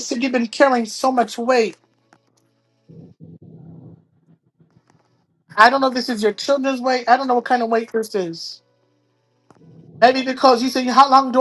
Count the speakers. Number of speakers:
one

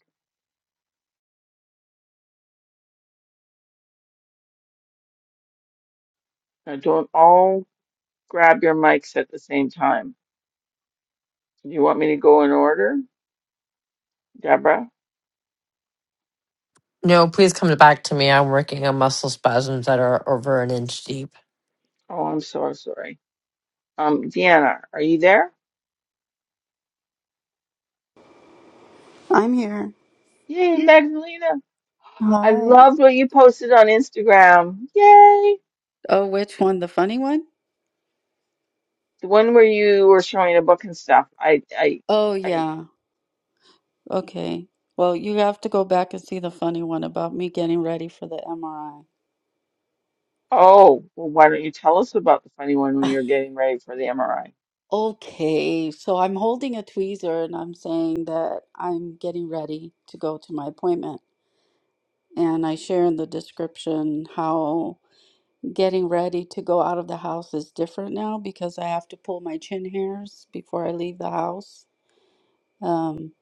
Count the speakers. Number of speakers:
three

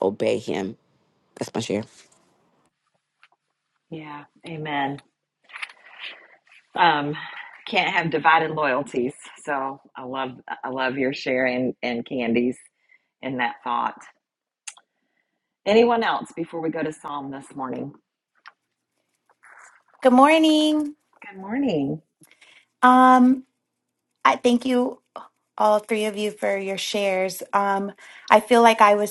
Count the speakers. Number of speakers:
three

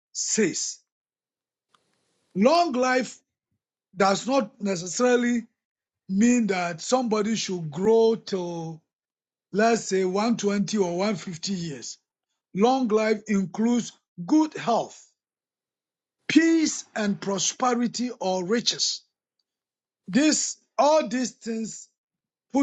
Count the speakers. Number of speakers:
one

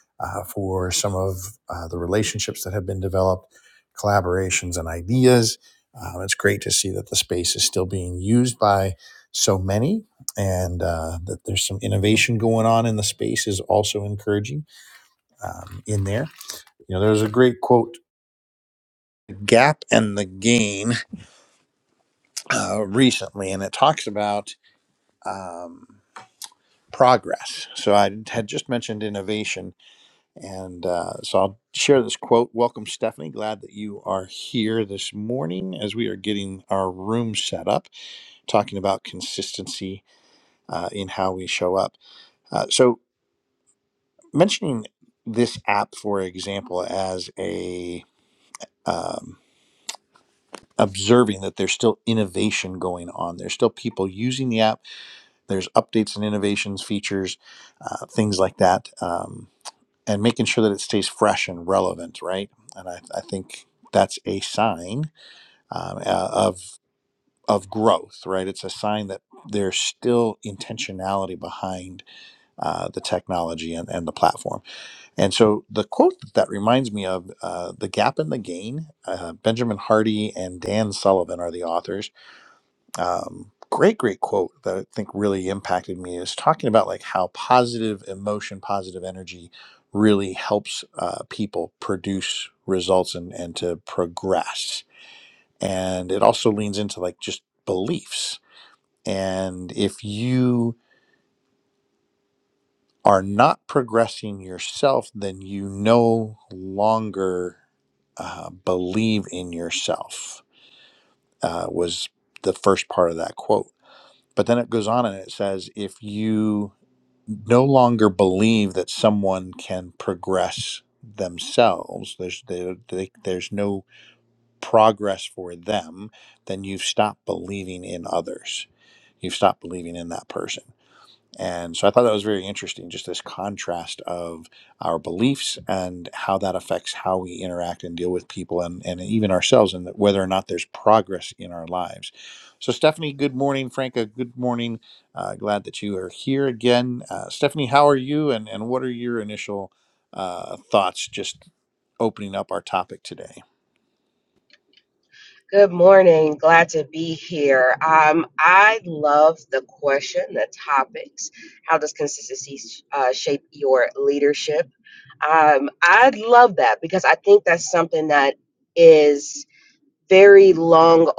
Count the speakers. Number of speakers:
two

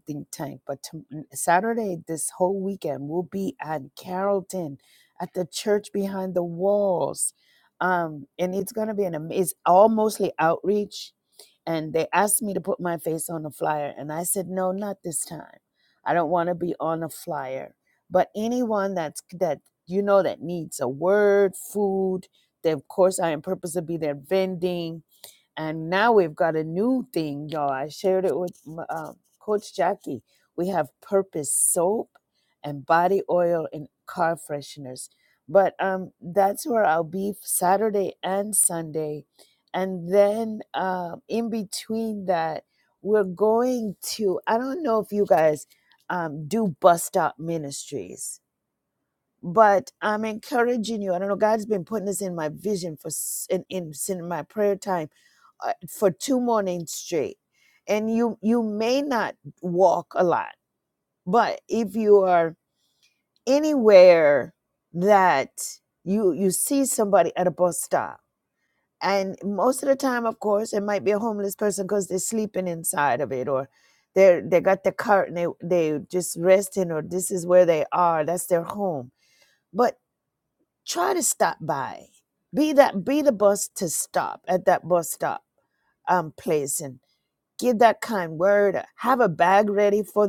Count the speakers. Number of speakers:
one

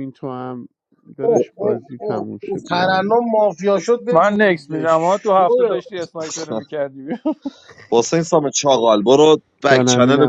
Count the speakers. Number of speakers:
four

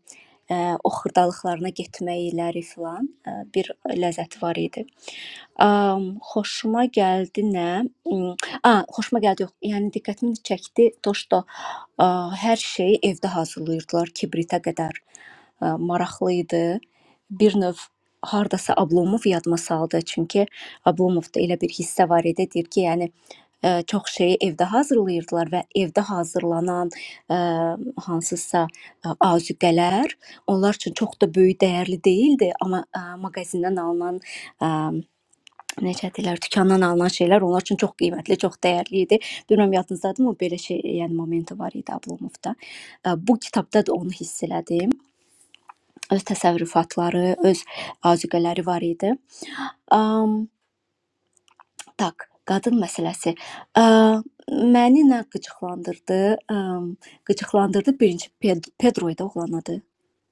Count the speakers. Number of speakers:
one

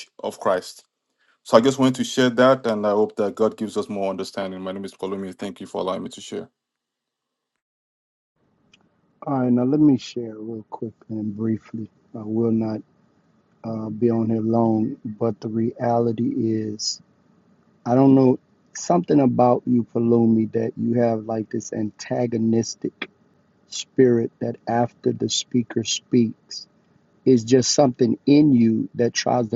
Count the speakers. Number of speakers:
two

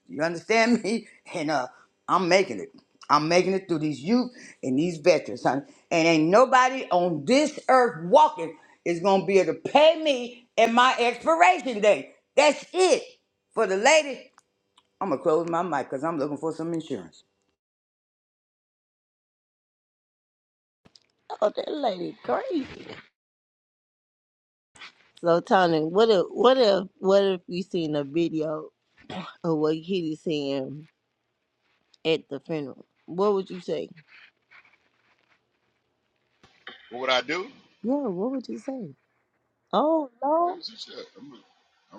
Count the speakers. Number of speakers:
three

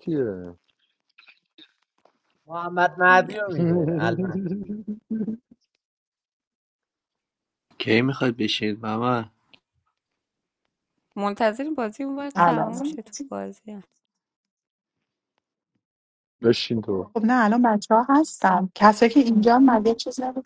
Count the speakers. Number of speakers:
five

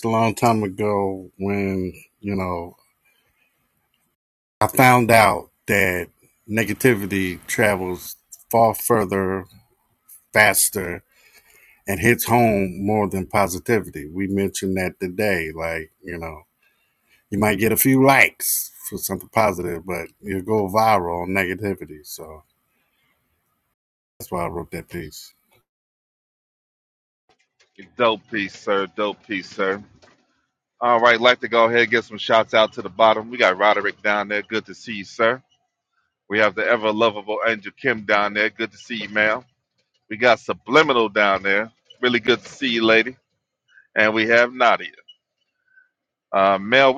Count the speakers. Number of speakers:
two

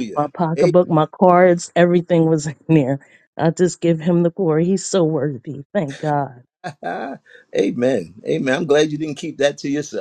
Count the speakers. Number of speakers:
two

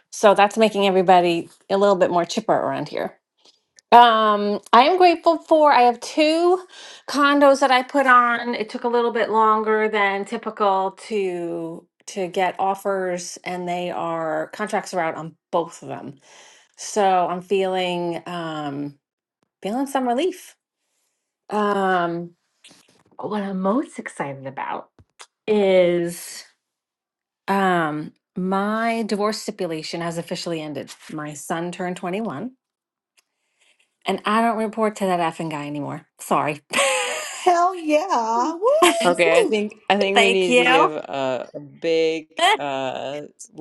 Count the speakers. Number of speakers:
three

